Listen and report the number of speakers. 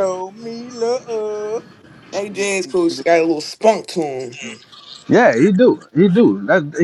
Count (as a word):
three